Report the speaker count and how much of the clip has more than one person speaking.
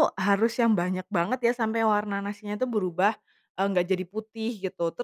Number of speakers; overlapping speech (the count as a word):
one, no overlap